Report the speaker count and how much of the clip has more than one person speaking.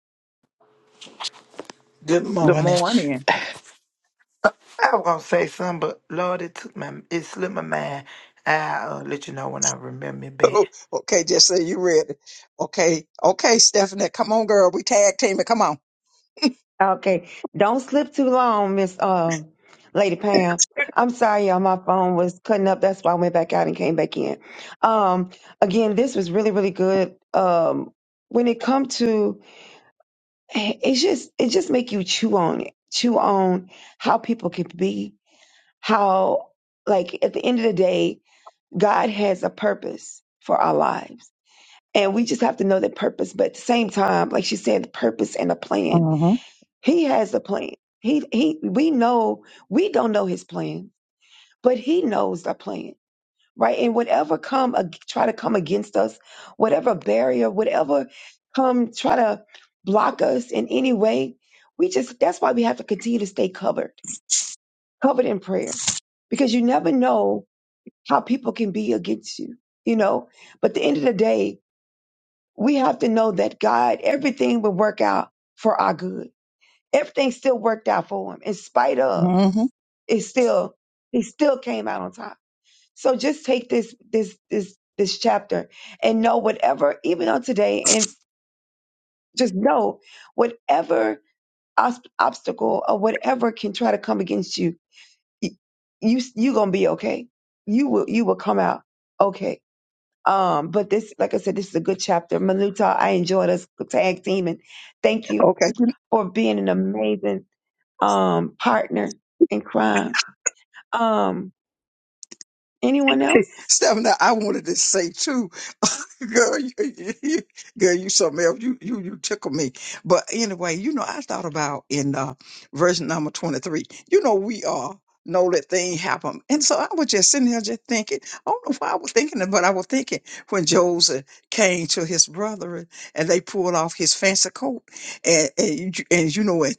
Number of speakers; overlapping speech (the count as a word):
three, about 1%